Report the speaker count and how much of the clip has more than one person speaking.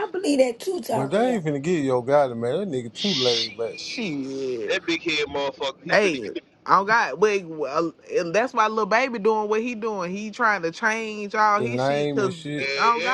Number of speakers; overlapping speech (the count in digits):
4, about 24%